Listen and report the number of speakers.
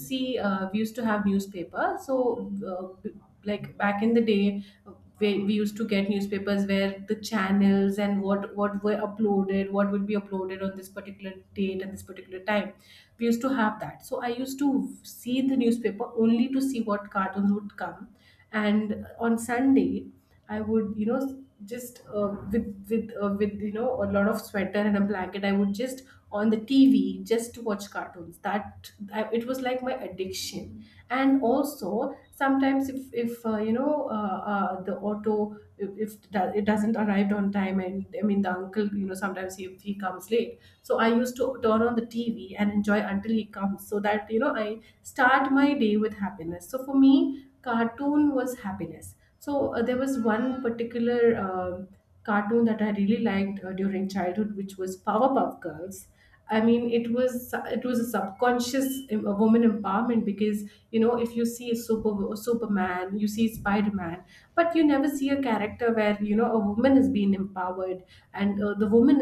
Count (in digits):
1